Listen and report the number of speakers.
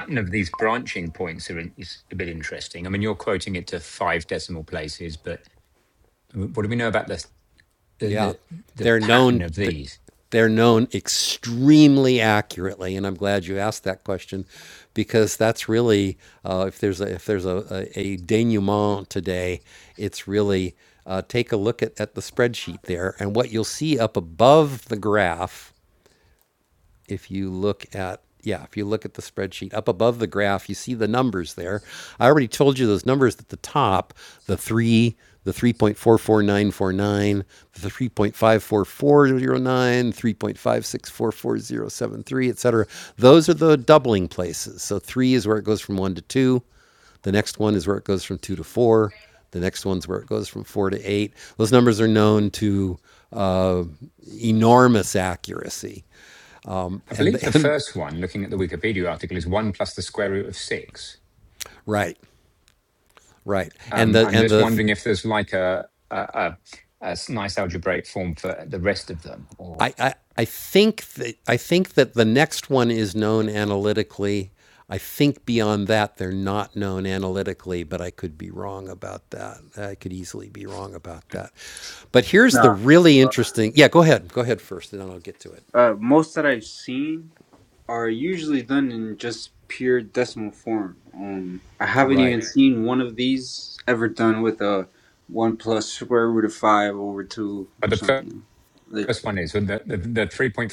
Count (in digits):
3